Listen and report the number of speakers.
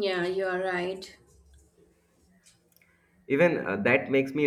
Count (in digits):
2